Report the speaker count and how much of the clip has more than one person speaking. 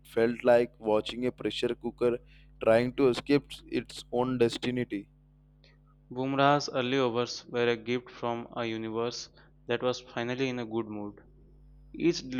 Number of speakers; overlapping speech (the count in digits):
2, no overlap